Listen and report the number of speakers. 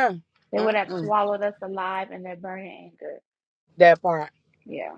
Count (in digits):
2